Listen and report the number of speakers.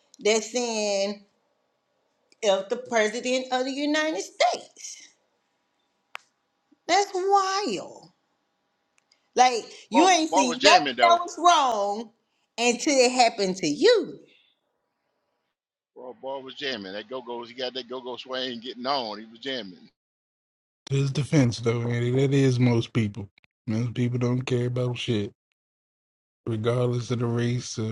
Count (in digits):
3